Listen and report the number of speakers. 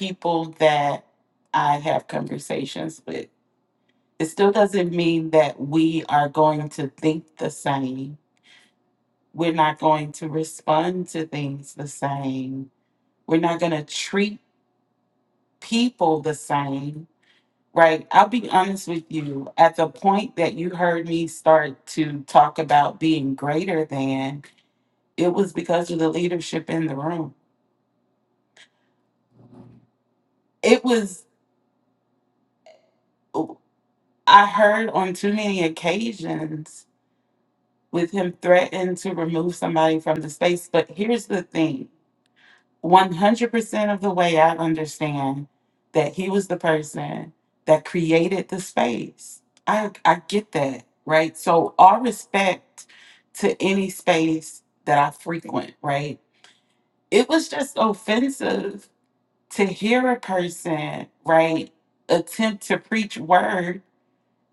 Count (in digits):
1